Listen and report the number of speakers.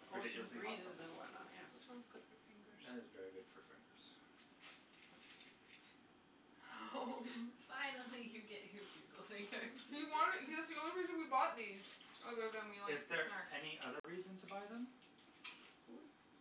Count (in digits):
4